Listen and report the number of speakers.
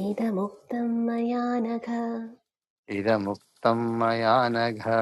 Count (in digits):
2